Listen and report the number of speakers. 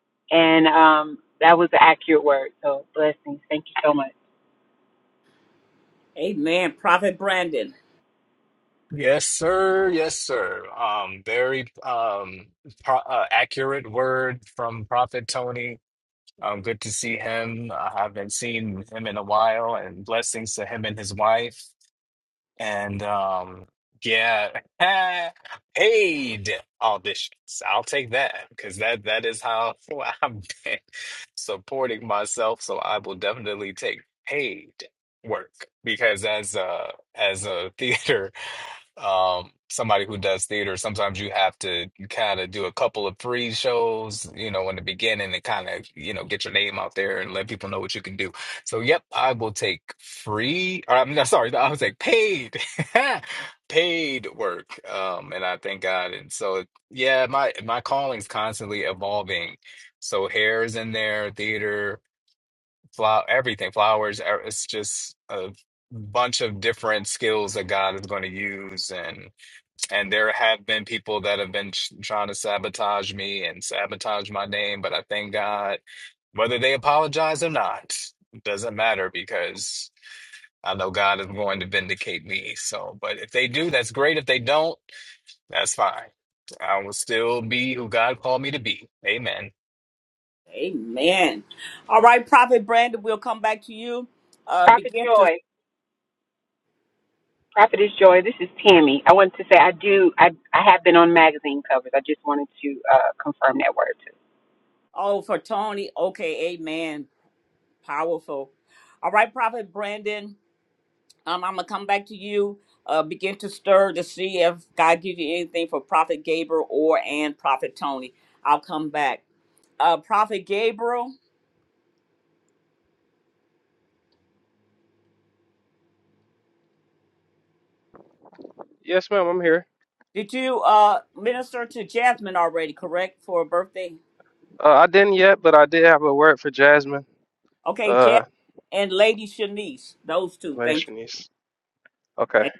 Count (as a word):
four